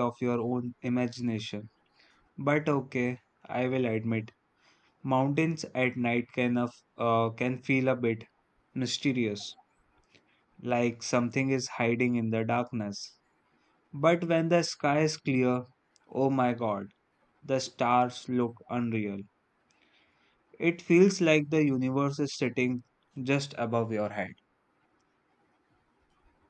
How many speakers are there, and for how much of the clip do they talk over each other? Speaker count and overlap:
one, no overlap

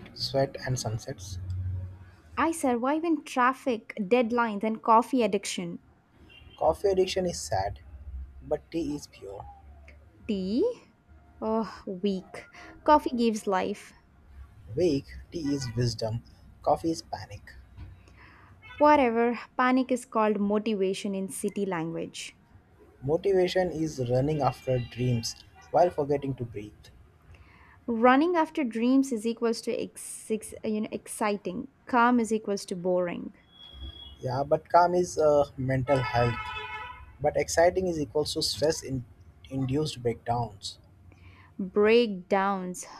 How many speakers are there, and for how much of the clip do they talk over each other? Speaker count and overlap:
two, no overlap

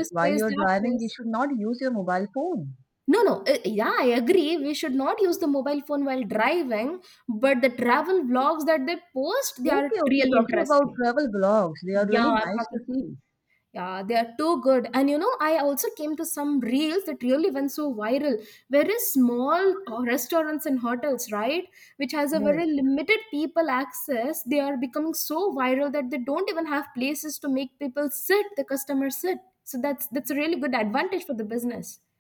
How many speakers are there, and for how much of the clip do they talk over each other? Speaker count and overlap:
two, about 10%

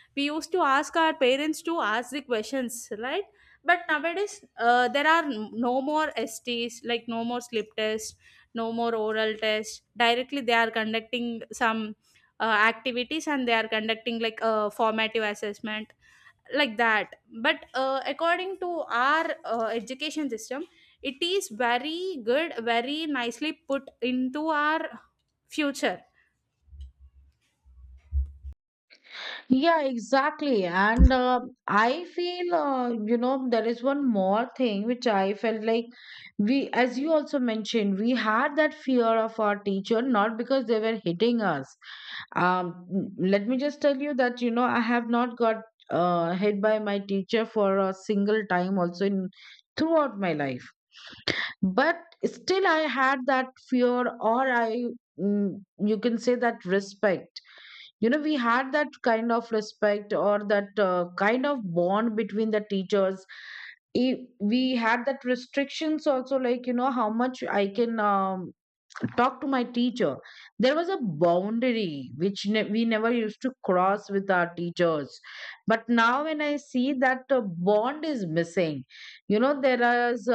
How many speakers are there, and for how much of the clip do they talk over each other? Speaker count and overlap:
two, no overlap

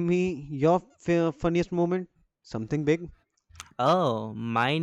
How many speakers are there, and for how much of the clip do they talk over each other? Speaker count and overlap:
two, no overlap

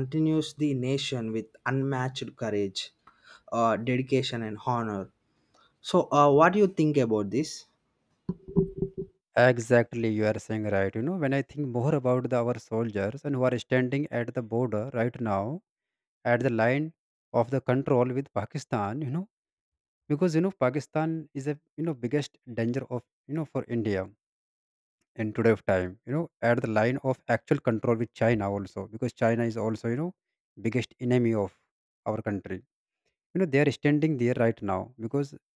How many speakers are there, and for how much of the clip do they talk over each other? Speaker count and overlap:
two, no overlap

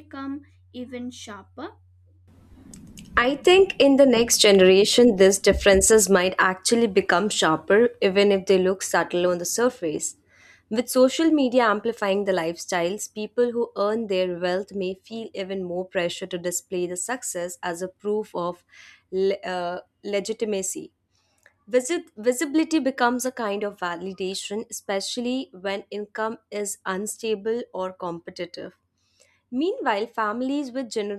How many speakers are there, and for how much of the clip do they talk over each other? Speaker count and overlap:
two, no overlap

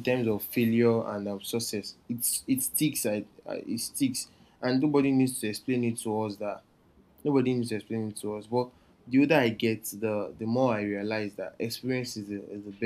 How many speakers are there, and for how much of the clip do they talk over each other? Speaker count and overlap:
one, no overlap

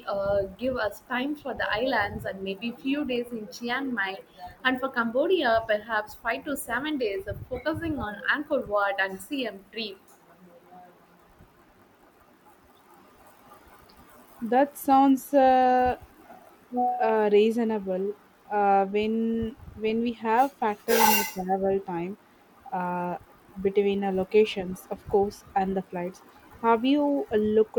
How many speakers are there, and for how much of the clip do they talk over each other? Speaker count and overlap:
two, no overlap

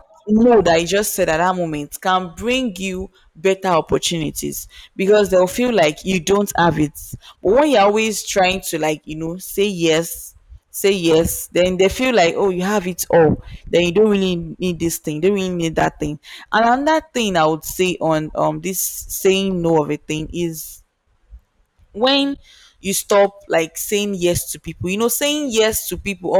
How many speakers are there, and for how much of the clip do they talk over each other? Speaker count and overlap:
one, no overlap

